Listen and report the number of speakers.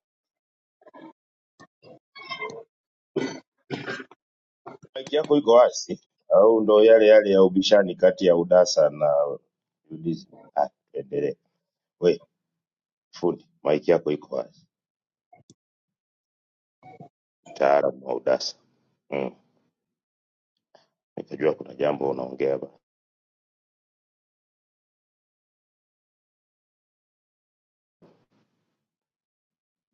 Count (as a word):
one